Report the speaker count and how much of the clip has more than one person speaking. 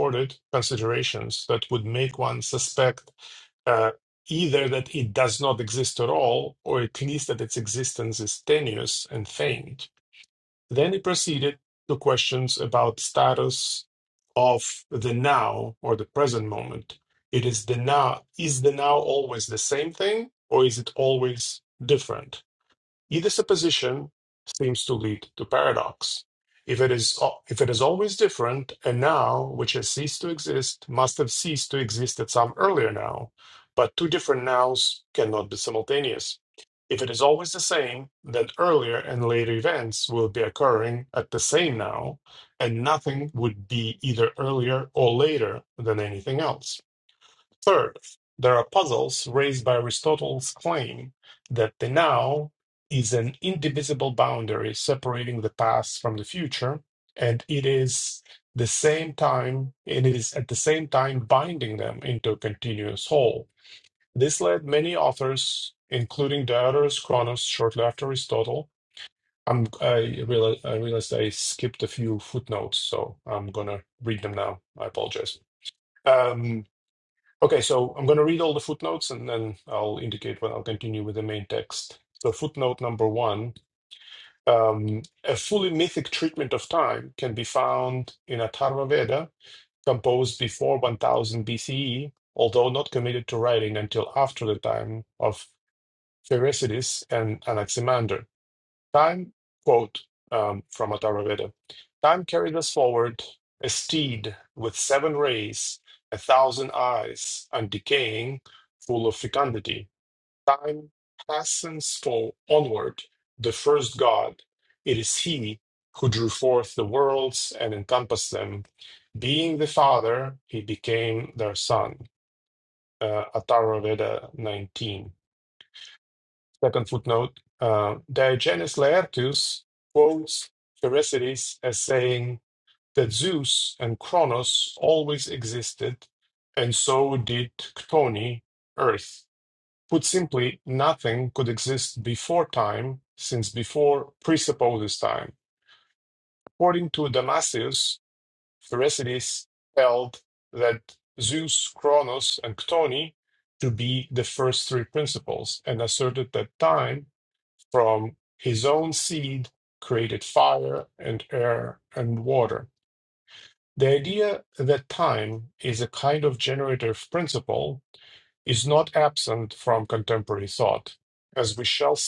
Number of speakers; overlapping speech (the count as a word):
one, no overlap